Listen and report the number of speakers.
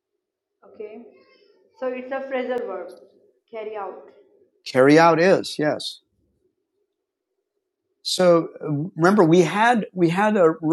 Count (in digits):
2